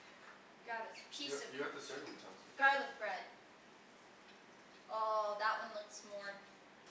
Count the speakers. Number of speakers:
two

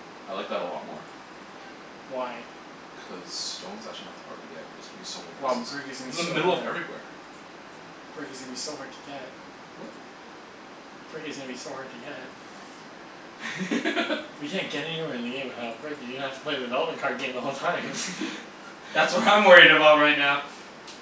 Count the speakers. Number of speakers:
three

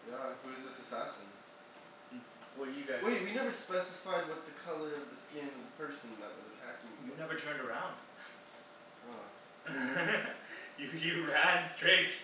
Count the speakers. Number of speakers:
two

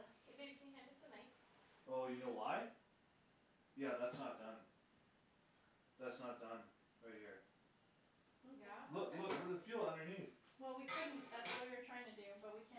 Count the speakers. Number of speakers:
three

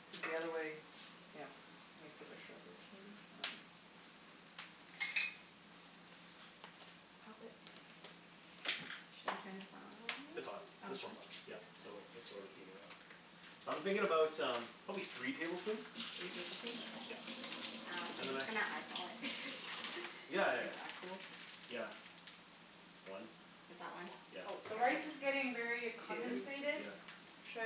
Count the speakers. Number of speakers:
three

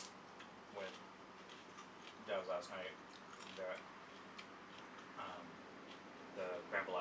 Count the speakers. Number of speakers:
one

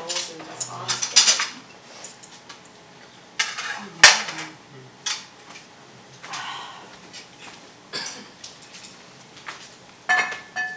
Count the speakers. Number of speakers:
one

